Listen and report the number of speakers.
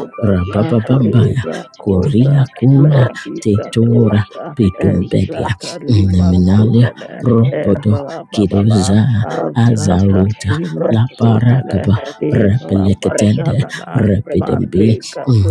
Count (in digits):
3